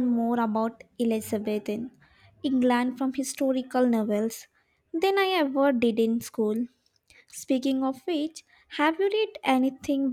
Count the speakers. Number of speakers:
one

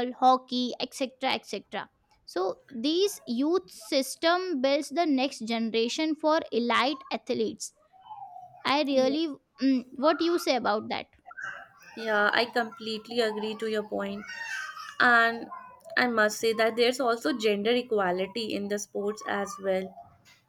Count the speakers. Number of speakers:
two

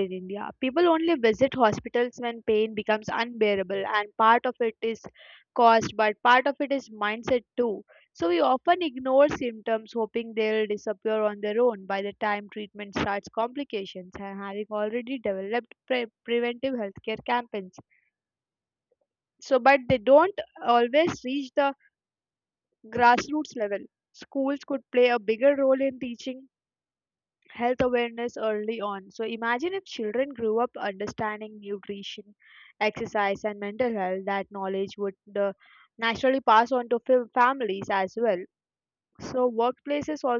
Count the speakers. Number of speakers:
one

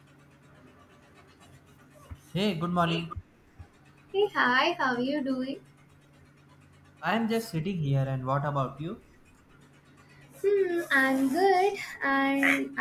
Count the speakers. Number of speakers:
two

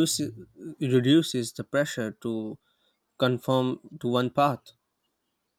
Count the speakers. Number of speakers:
one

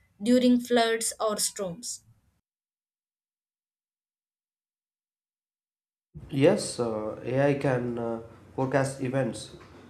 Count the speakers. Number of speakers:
two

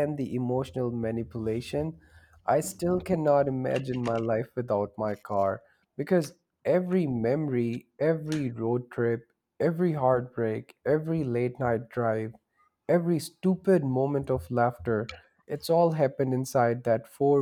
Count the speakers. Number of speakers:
one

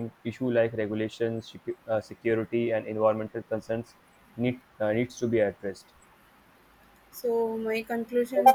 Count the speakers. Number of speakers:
two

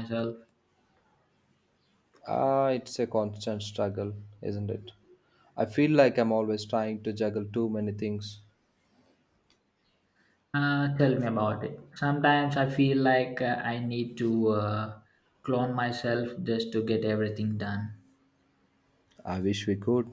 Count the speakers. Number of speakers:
two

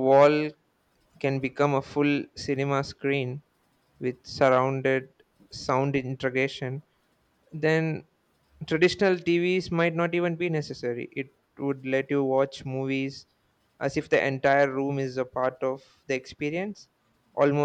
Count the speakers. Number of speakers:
one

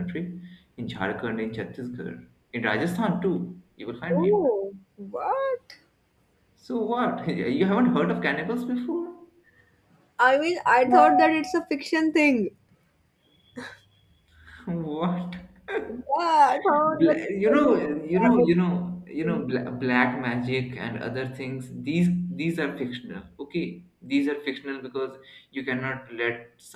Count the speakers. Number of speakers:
two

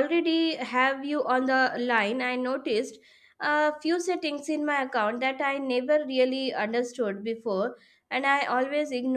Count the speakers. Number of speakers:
one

